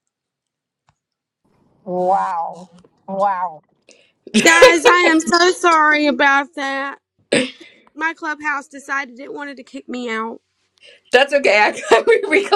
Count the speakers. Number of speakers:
3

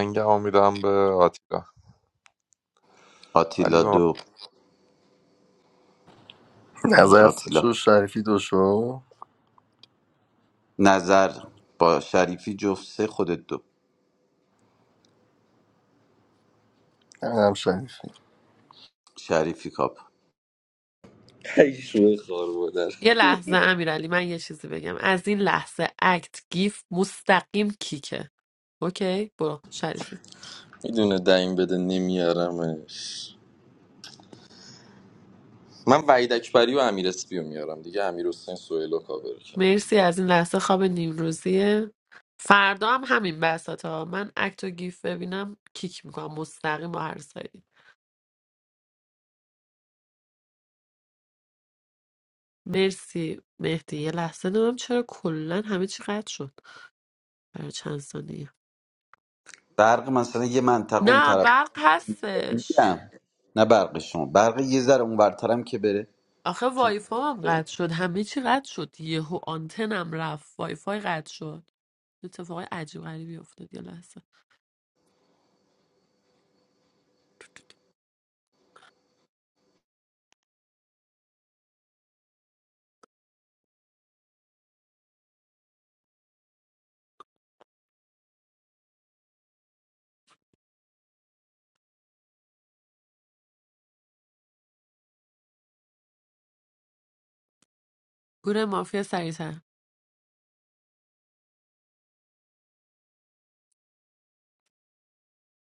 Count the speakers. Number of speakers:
5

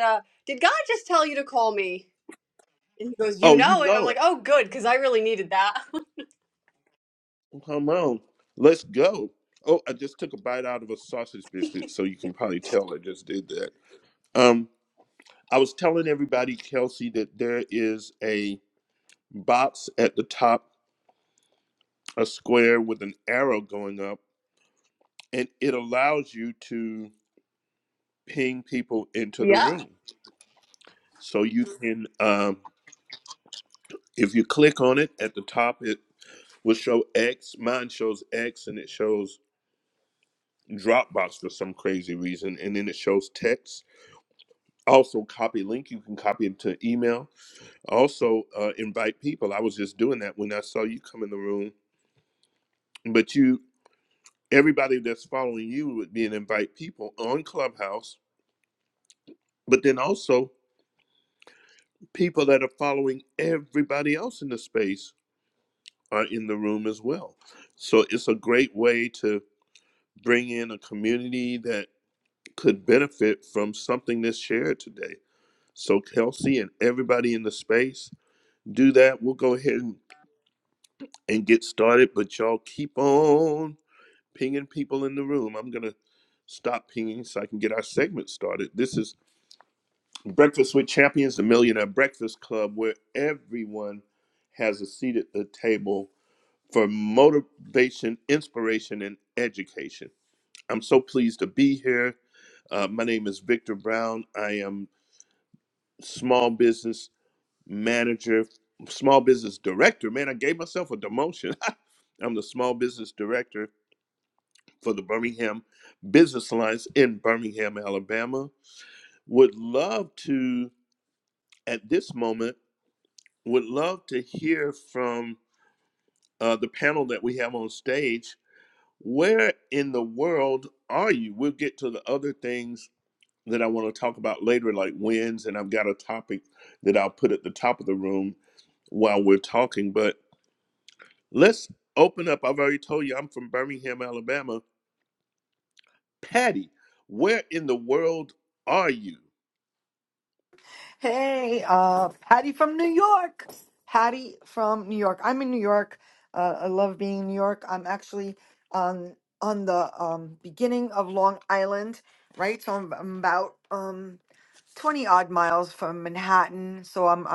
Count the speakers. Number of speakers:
3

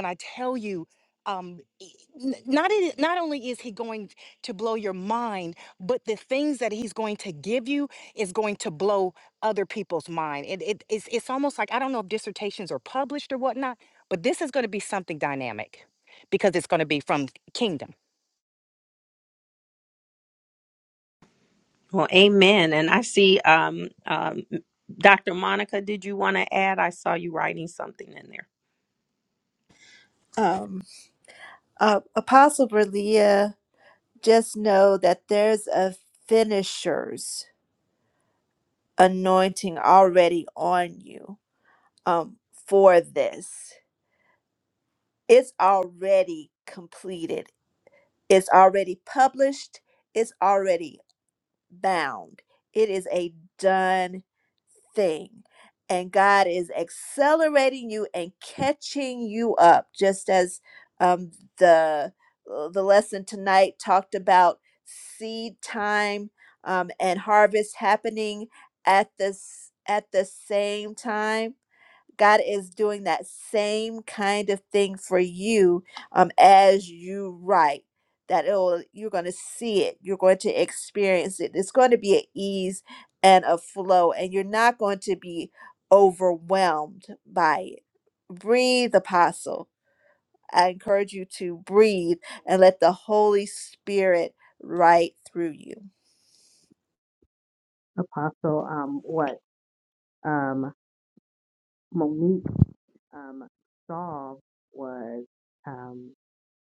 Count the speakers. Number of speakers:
4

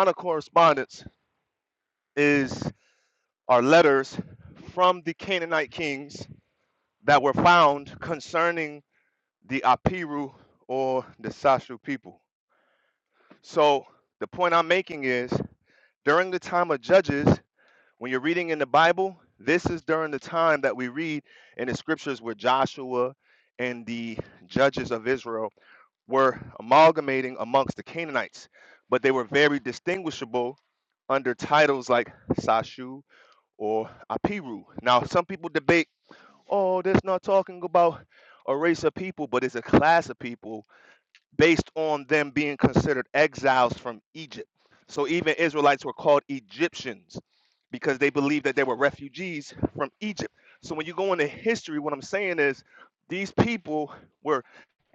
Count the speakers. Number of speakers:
1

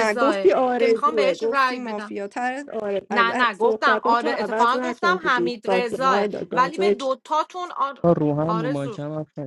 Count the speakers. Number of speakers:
3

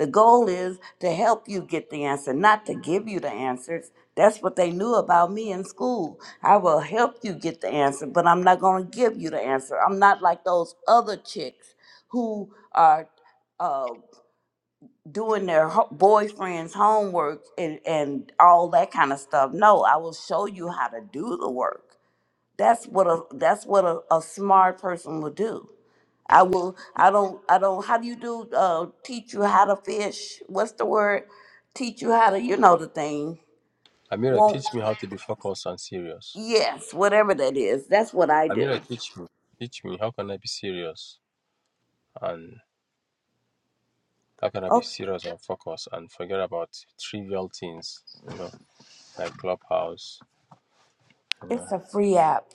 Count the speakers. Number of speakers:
2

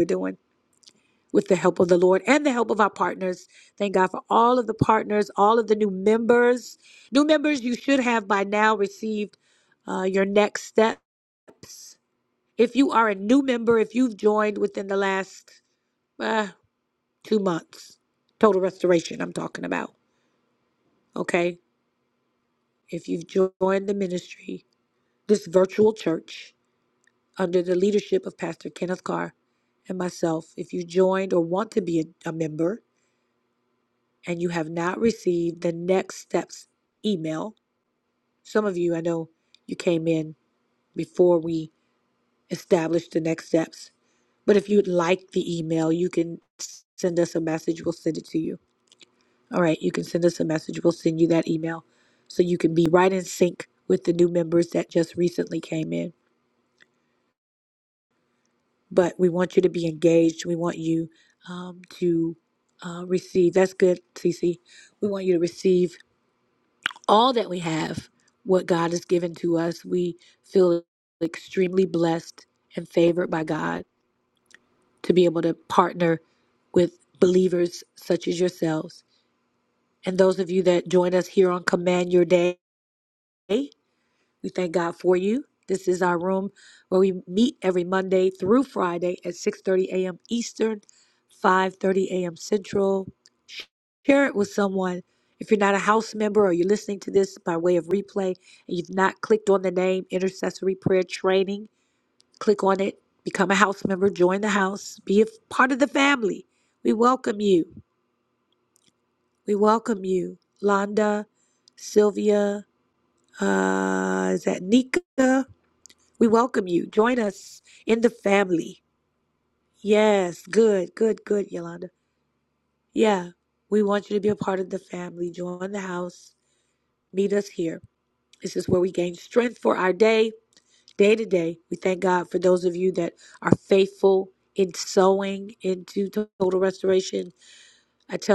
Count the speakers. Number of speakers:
1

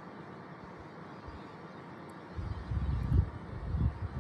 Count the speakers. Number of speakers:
0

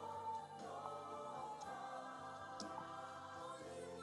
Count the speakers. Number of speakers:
0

